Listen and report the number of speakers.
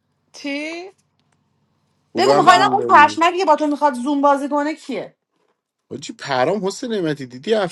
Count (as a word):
three